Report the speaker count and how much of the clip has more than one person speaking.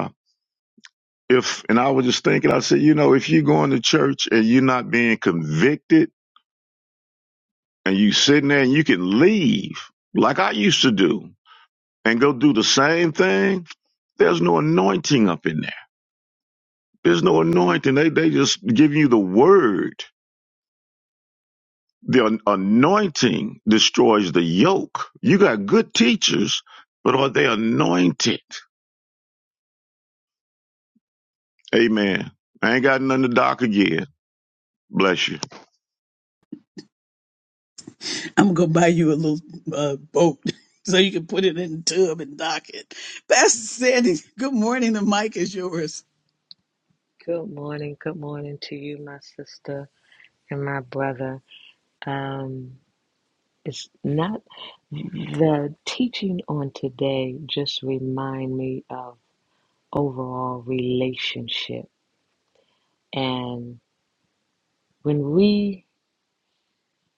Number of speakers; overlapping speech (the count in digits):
3, no overlap